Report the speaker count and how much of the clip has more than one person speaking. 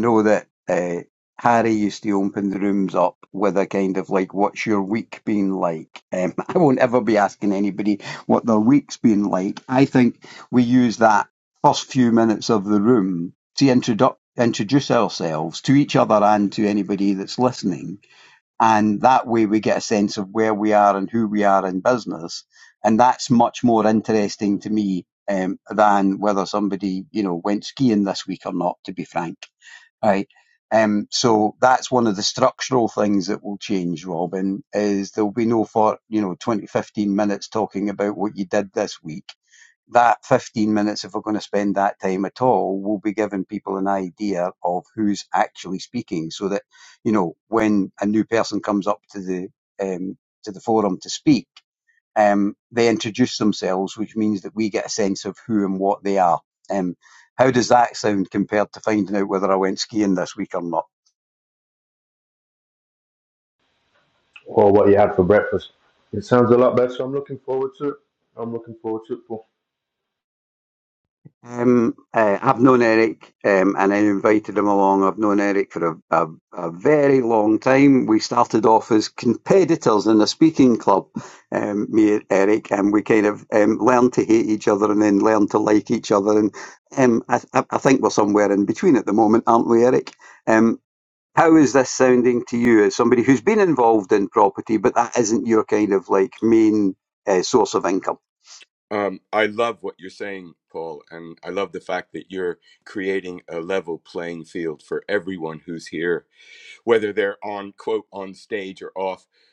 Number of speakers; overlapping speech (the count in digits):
3, no overlap